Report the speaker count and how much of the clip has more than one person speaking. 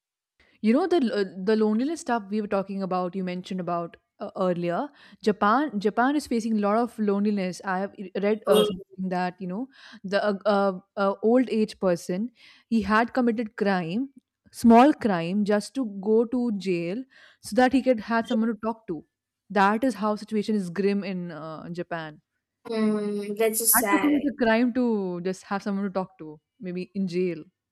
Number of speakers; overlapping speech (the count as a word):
two, about 3%